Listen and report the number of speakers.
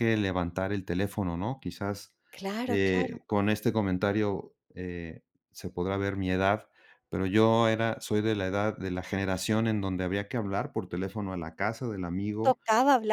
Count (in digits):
2